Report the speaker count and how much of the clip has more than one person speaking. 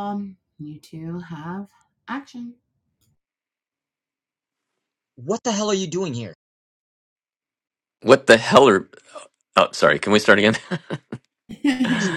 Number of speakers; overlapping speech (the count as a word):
three, about 3%